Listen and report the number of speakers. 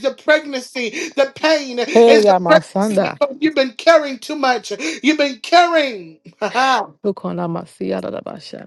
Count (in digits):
2